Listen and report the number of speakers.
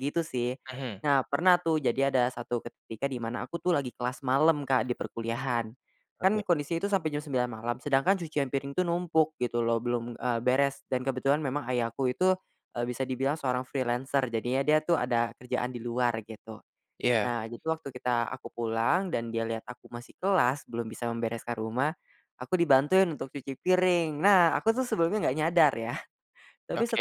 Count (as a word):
two